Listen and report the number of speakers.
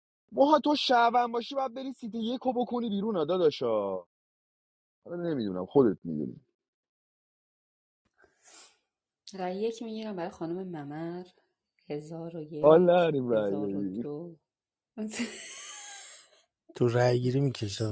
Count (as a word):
three